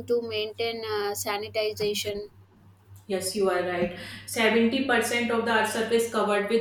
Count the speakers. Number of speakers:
2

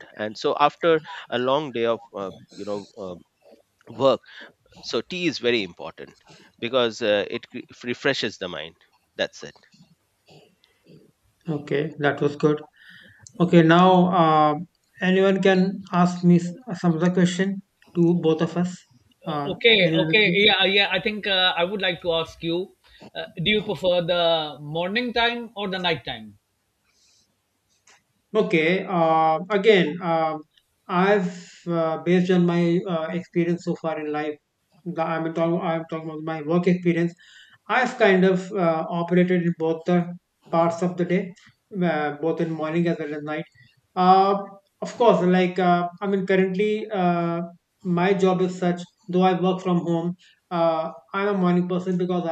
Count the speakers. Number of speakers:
3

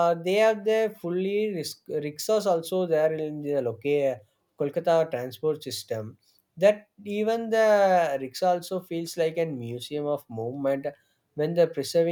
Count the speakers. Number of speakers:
1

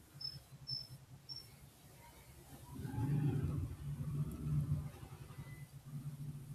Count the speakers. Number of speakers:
0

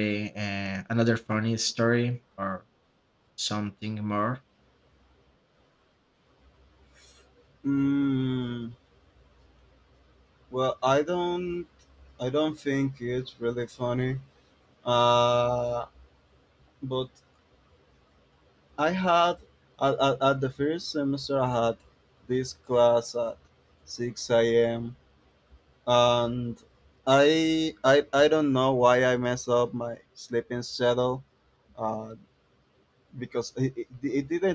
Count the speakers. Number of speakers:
2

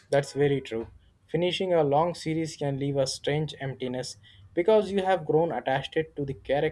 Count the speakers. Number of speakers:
1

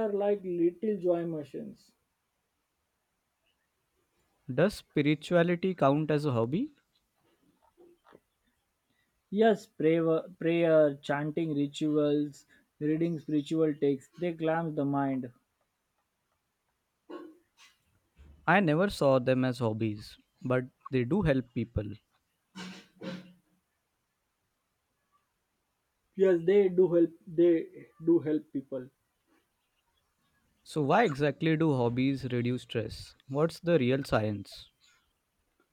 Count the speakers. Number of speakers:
2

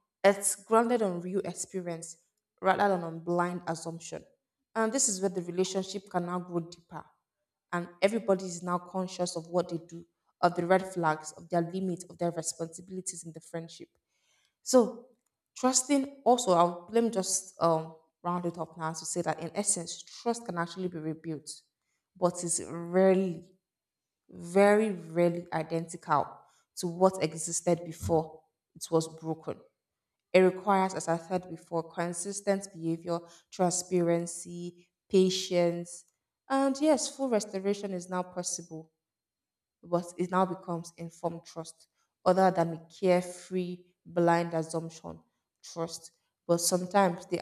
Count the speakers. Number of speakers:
1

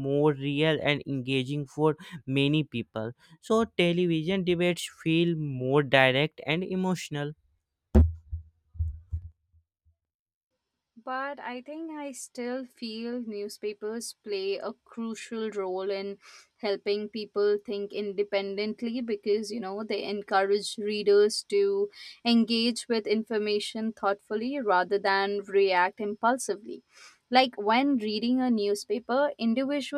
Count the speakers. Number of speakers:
2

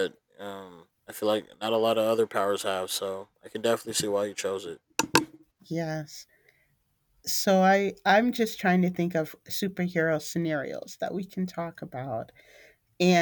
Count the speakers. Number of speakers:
2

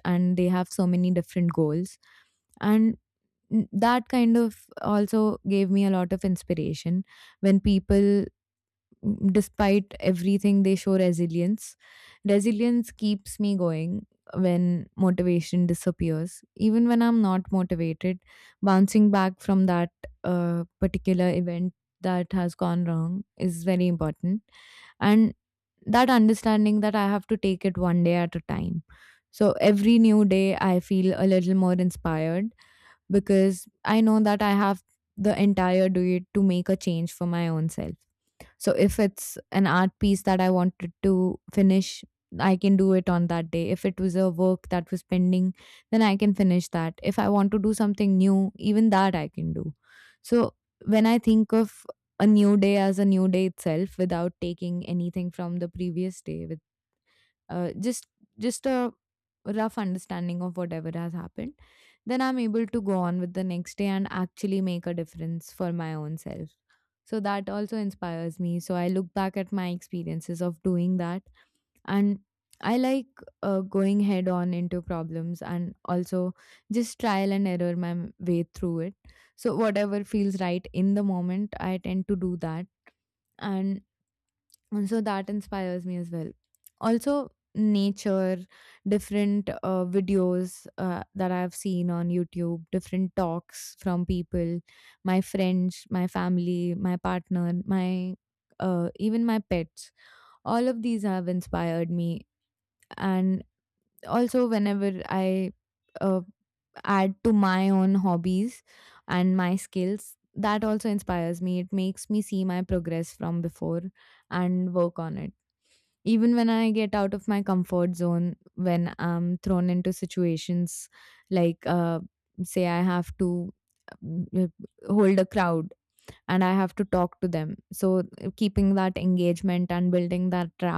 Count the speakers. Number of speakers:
1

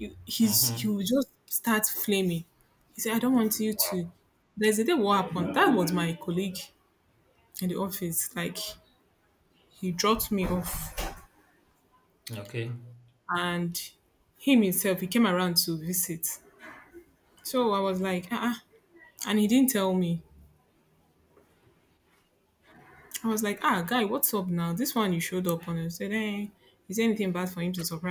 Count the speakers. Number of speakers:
2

